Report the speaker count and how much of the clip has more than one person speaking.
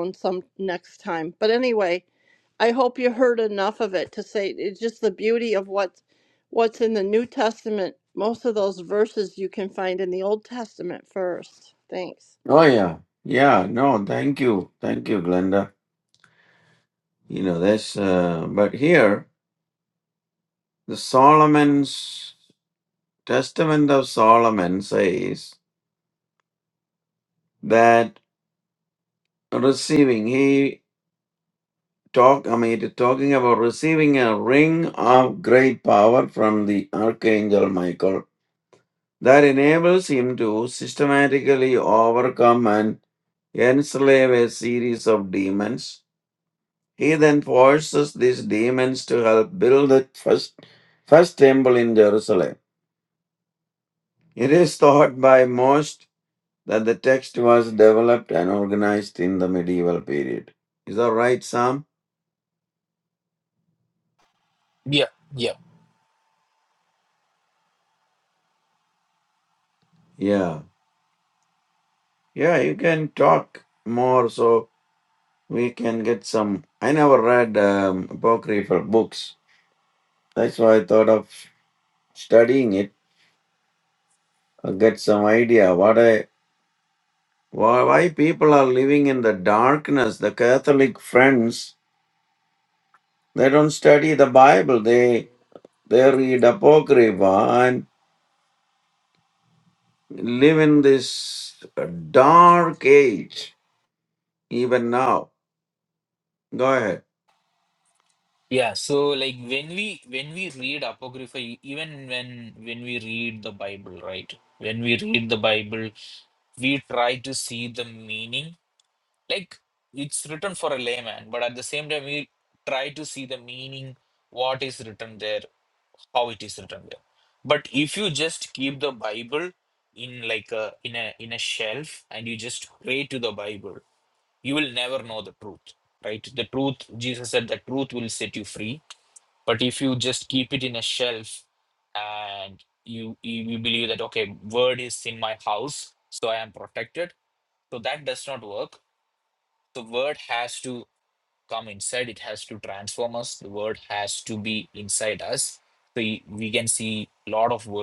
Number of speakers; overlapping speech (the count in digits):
3, no overlap